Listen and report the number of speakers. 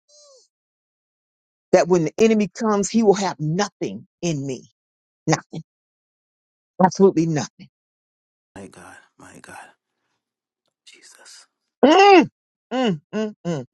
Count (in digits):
2